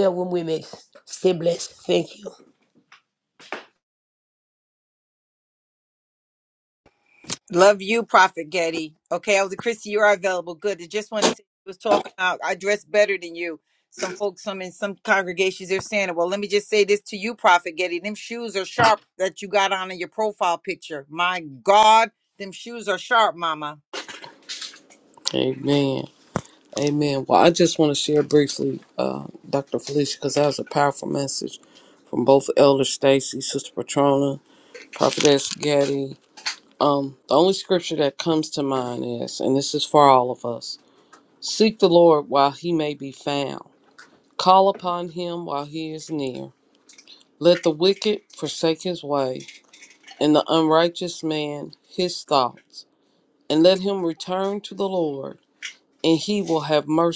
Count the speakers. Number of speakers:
three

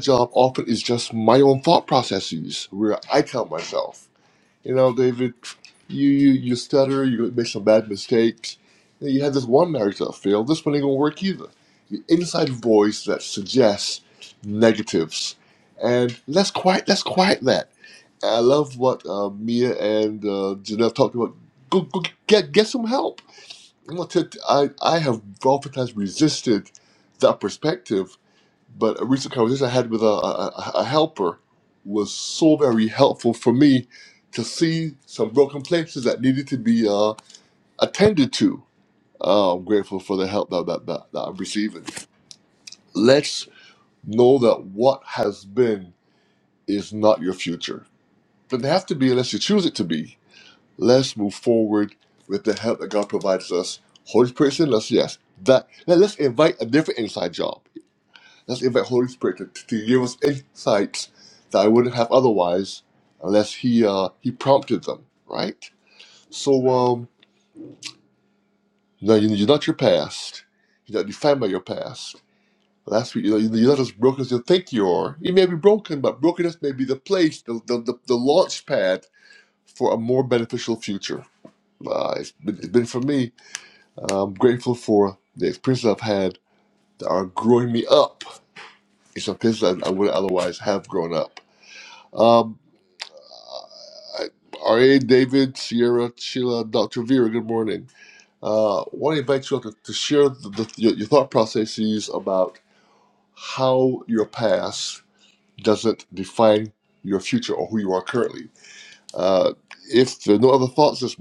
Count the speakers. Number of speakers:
one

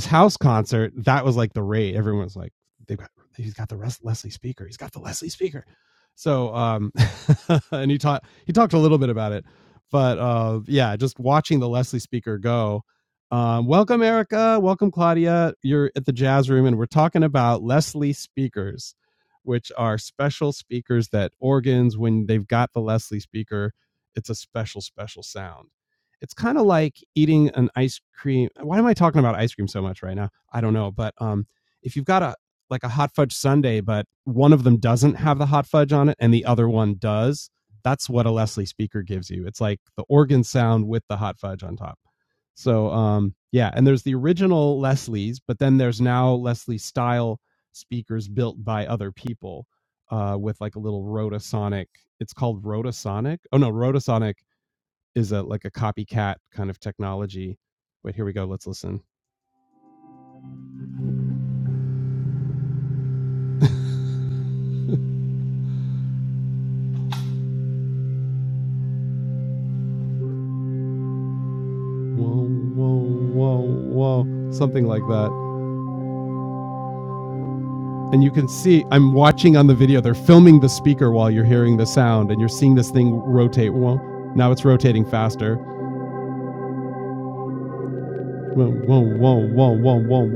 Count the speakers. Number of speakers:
one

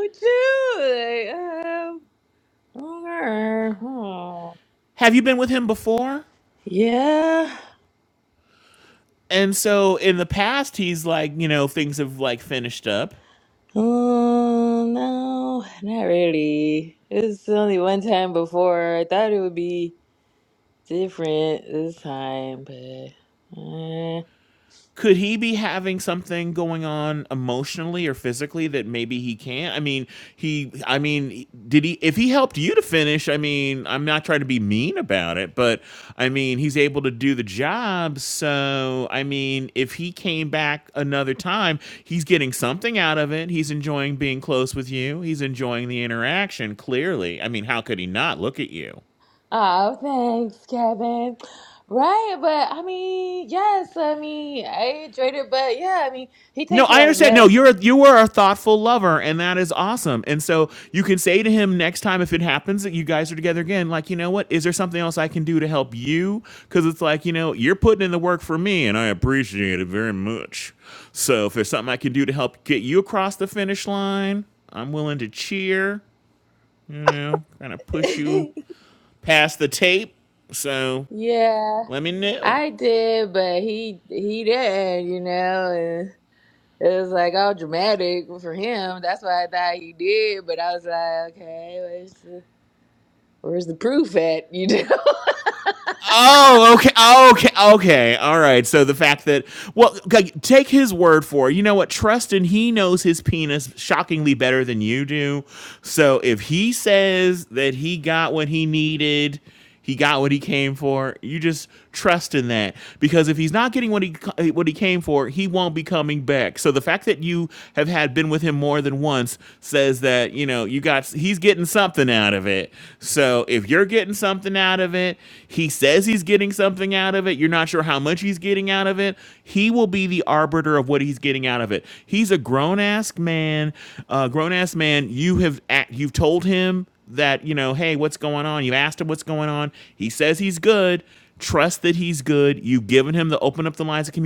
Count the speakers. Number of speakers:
two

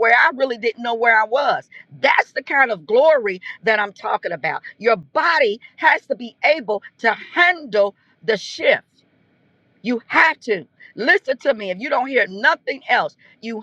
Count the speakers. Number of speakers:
one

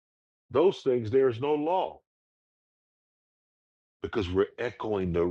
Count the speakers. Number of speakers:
one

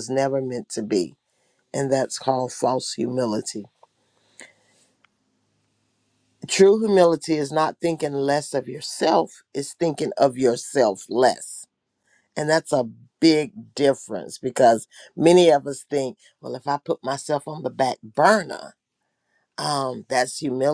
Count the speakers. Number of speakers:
one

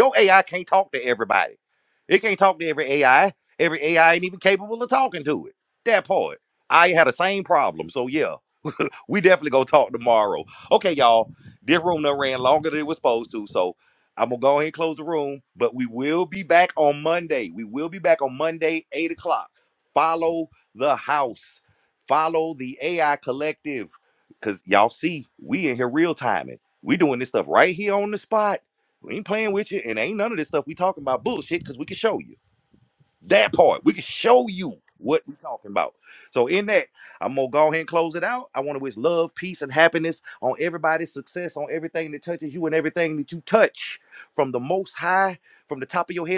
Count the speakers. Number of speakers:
one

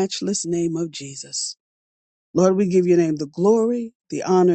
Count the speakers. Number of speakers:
one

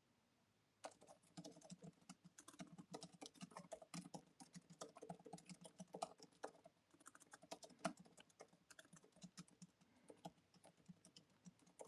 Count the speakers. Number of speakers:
zero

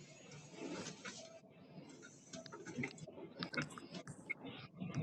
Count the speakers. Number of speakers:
zero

